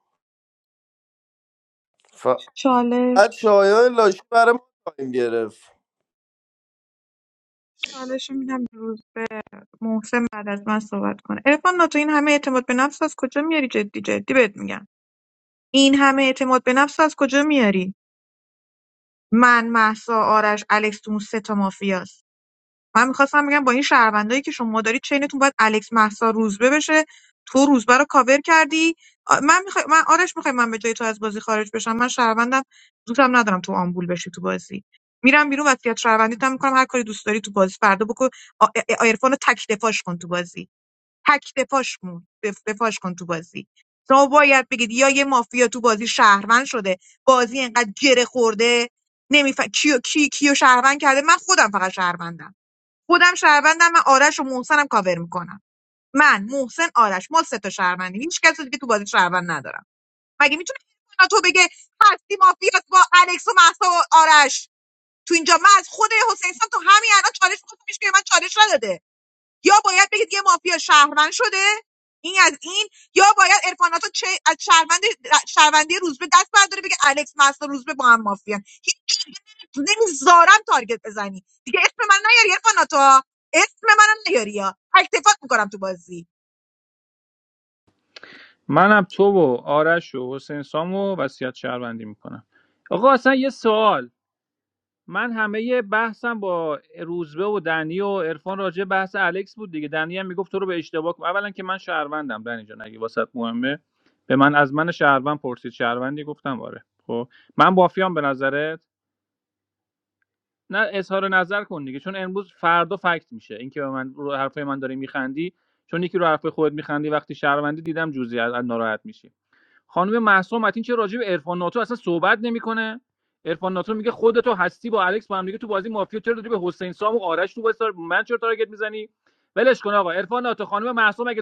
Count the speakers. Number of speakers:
three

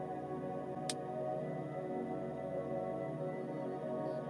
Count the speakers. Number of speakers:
zero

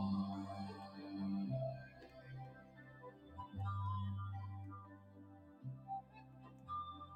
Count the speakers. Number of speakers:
zero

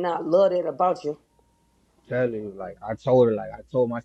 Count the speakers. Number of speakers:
two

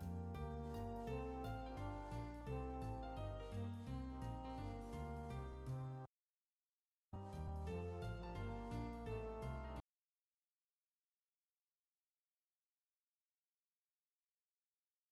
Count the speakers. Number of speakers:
zero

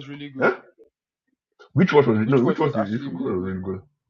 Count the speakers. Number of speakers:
two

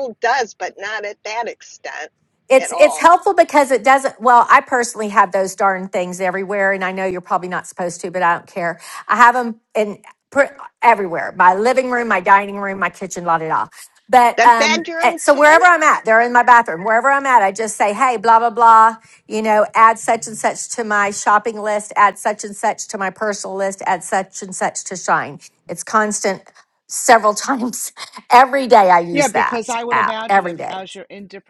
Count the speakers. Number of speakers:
three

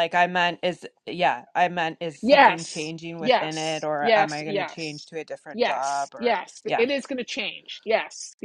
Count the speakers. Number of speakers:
two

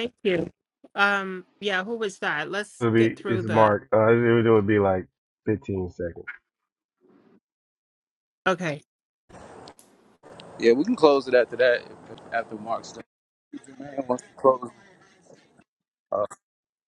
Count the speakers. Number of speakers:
three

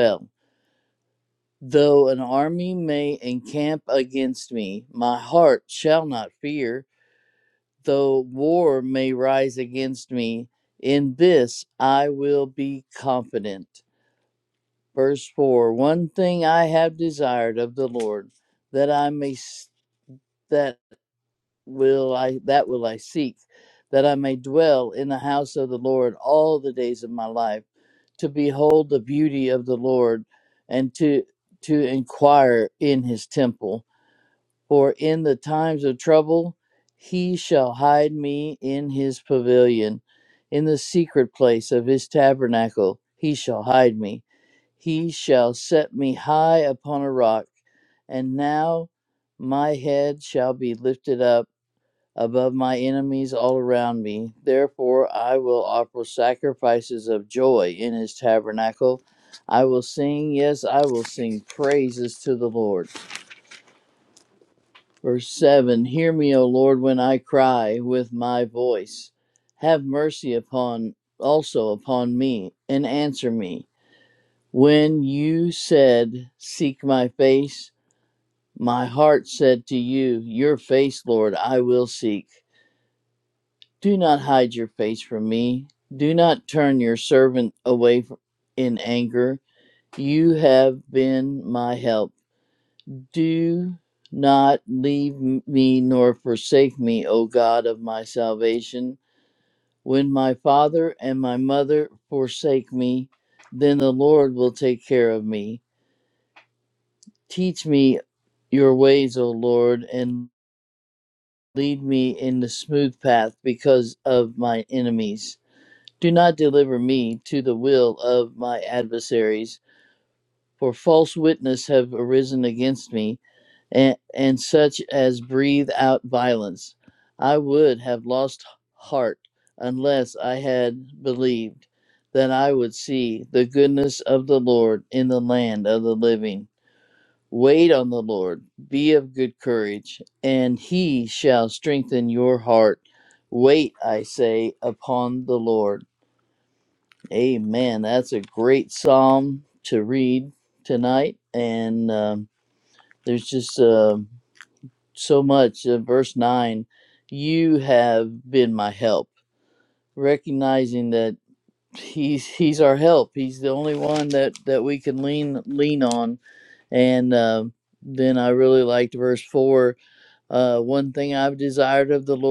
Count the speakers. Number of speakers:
one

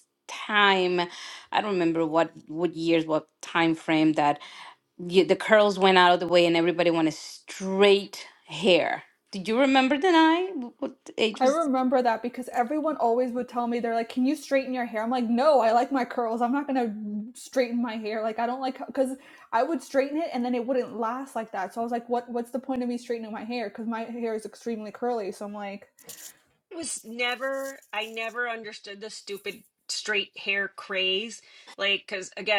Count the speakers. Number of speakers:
three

